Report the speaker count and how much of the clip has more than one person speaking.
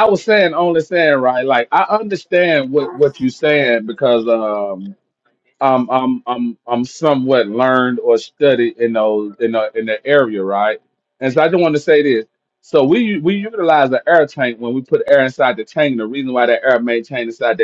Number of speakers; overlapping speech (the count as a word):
one, no overlap